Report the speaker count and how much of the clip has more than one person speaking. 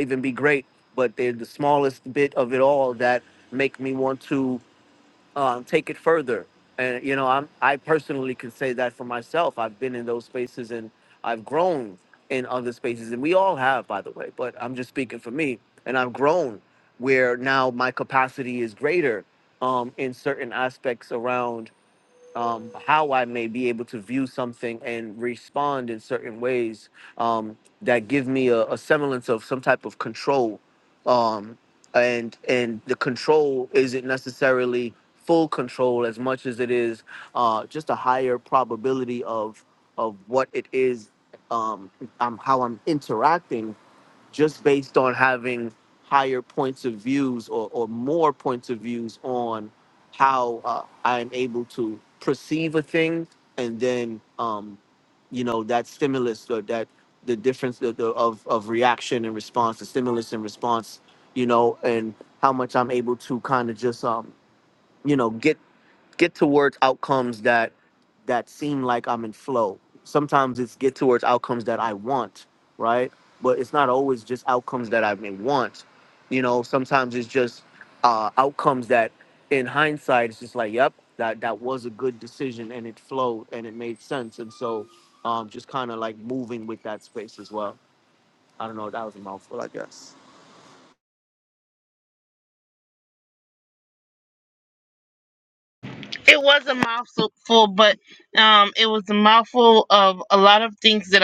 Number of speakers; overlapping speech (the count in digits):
2, no overlap